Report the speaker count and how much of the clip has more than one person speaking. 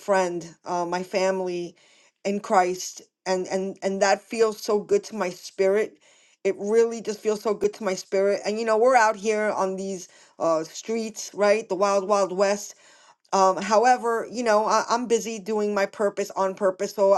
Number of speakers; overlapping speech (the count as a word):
one, no overlap